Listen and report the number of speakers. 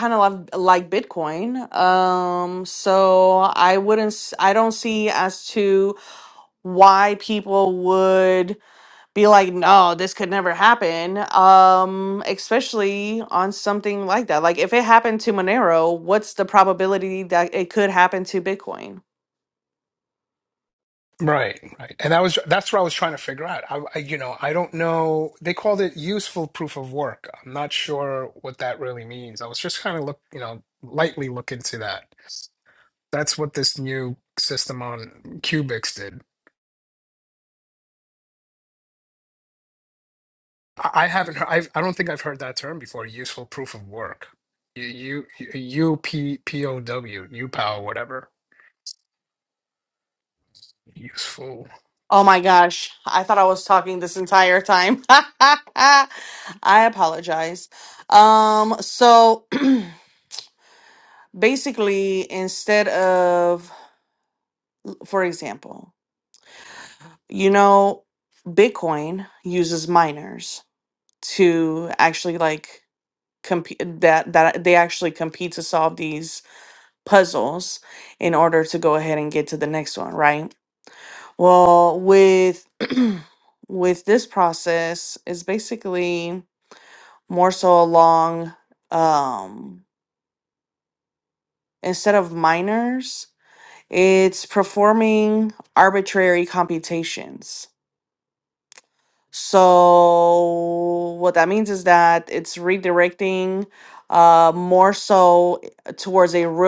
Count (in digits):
2